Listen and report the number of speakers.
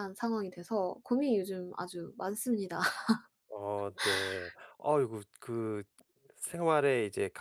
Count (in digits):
2